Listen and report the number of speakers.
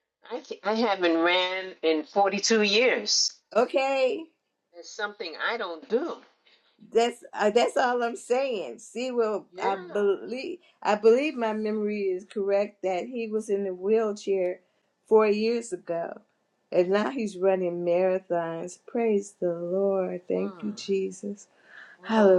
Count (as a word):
two